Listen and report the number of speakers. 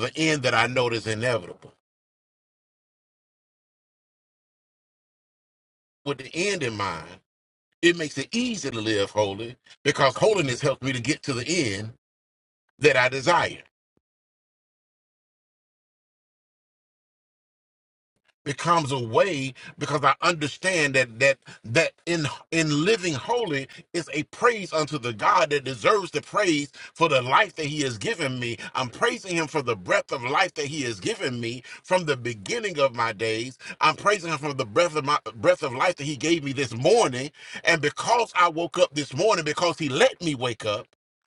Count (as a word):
one